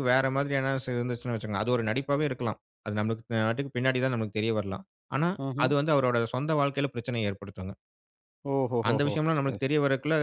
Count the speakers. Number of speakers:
2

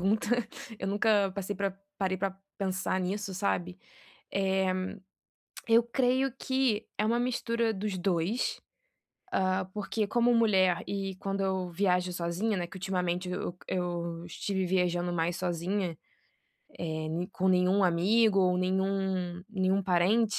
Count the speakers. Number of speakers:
1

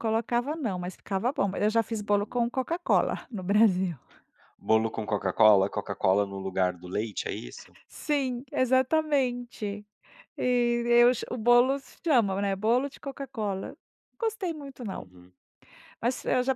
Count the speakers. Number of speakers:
2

